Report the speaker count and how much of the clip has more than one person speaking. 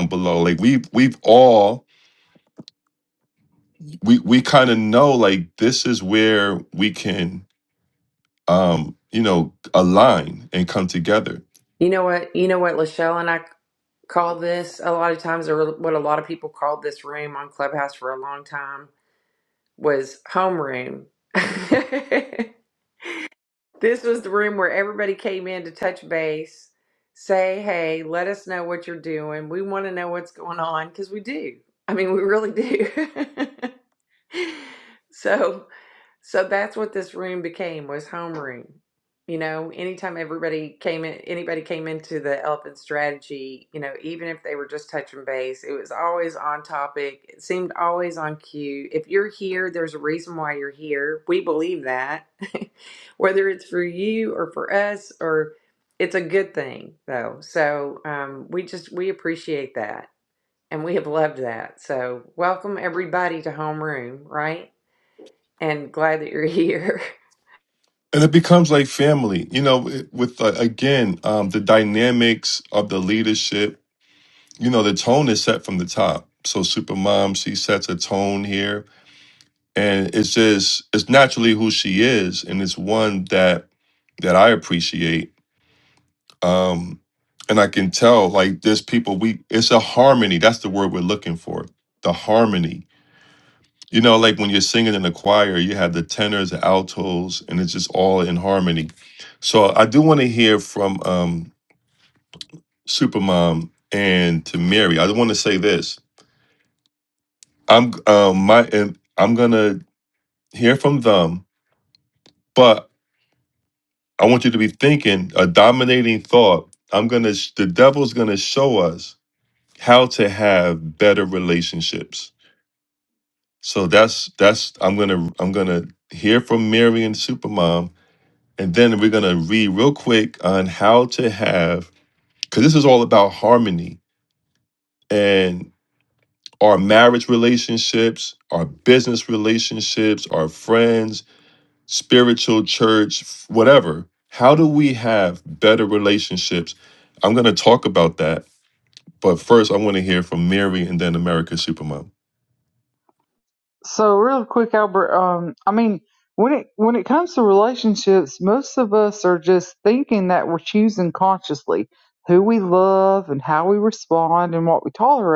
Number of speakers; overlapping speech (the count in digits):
3, no overlap